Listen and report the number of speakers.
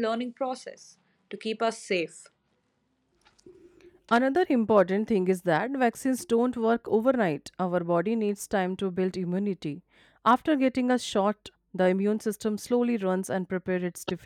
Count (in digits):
2